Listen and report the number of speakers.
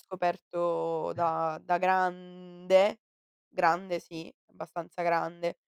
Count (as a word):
one